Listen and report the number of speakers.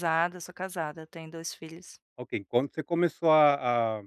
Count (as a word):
two